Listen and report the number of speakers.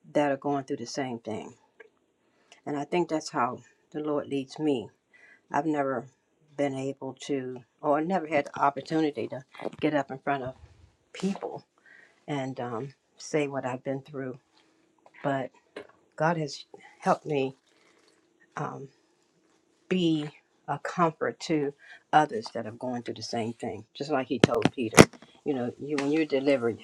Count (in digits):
1